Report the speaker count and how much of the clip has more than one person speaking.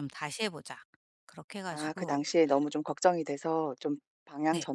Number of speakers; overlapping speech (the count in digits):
2, about 13%